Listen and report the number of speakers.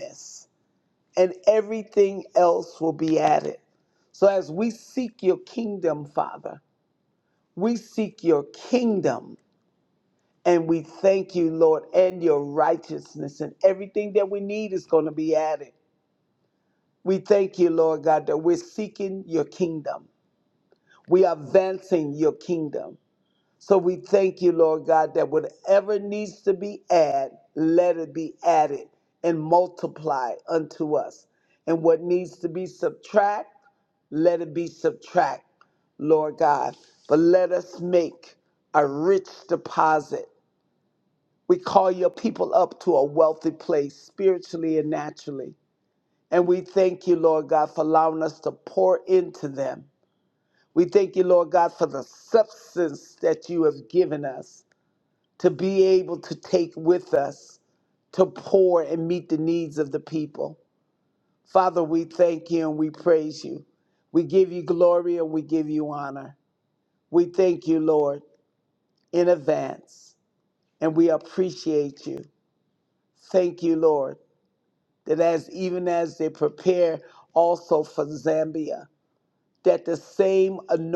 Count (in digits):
1